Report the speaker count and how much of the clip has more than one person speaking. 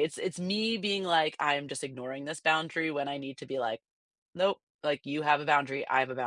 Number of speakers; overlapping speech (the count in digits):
1, no overlap